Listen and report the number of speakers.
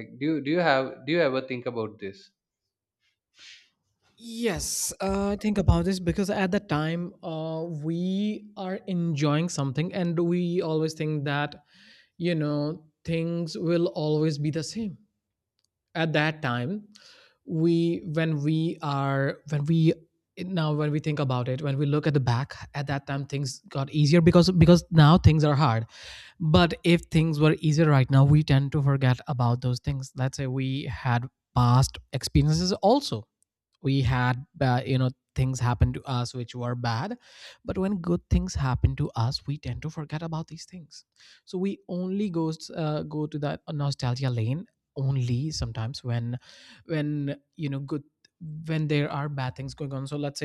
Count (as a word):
two